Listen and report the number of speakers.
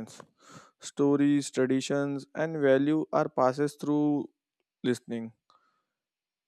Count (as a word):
one